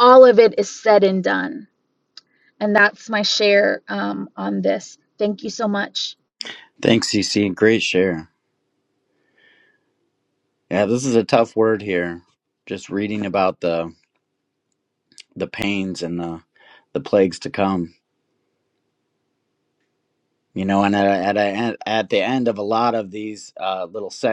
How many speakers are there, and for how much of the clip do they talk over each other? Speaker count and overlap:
2, no overlap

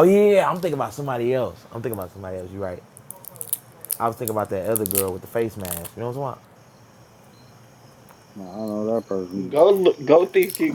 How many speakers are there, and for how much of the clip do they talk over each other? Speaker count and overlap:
3, about 2%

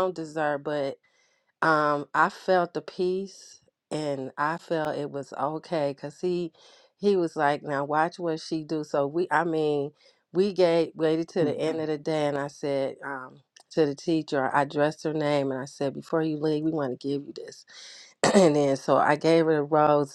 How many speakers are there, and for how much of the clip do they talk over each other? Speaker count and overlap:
1, no overlap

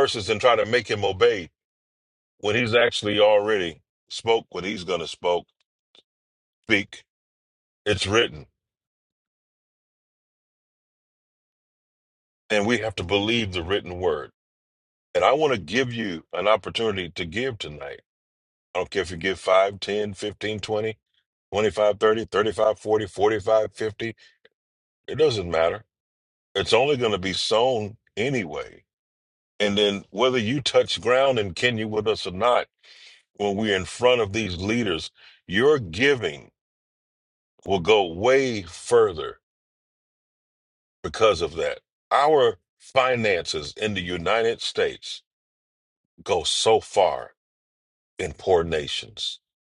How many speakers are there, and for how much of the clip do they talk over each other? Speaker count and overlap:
1, no overlap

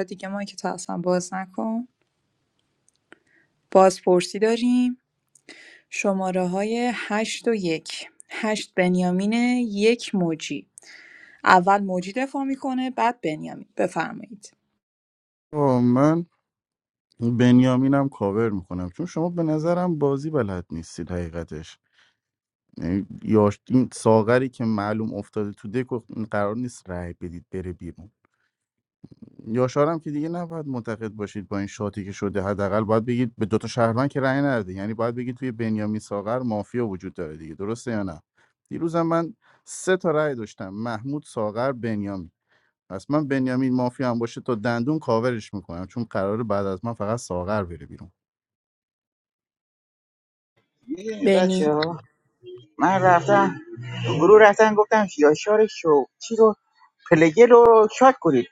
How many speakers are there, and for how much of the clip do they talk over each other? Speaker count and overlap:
3, under 1%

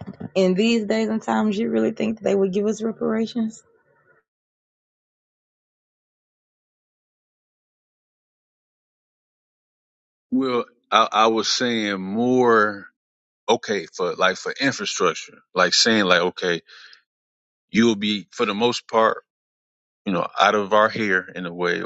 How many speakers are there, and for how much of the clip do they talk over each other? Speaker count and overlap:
2, no overlap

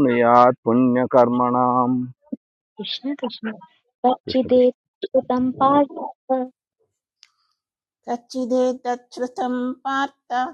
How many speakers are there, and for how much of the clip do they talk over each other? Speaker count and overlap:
3, about 3%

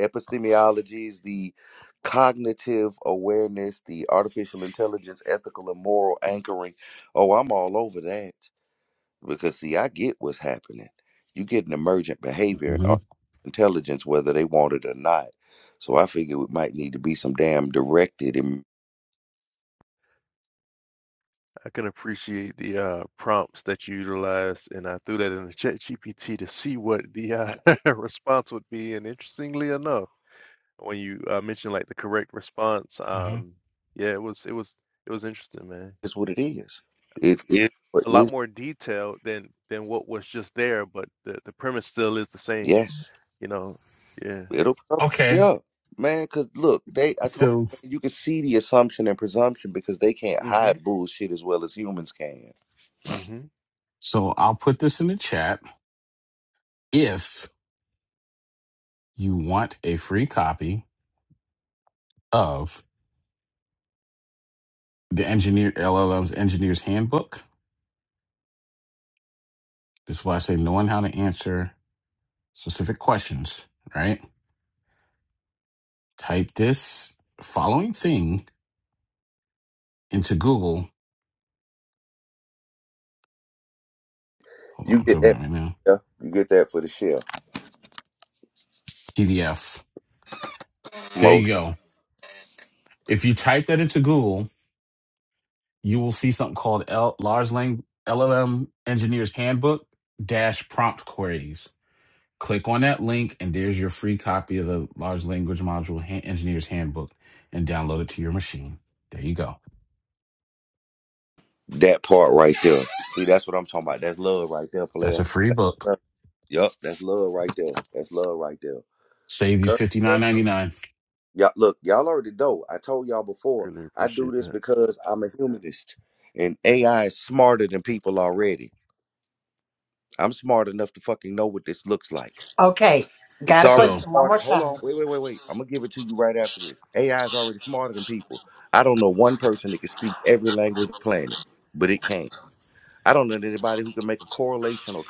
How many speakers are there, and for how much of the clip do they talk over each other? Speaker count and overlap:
4, about 4%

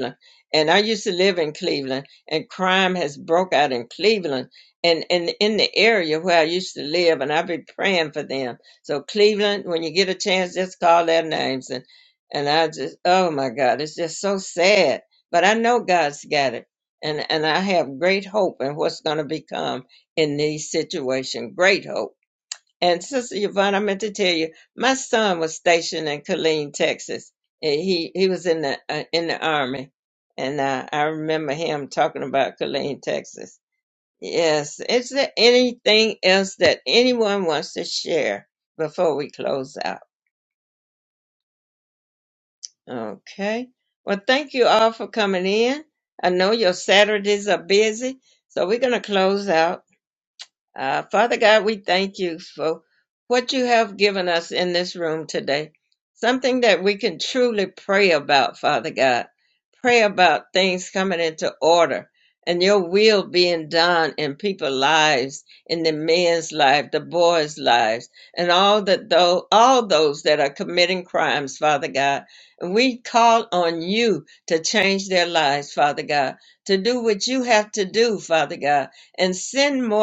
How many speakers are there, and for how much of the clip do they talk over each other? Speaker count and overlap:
1, no overlap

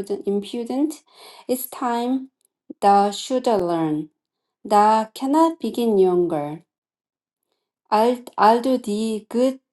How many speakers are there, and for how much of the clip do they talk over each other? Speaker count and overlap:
1, no overlap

